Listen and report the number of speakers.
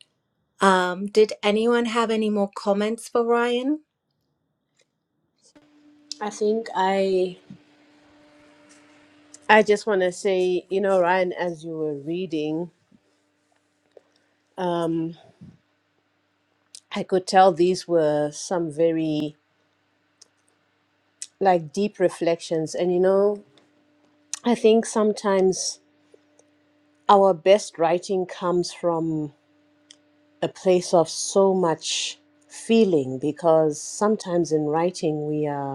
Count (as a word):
two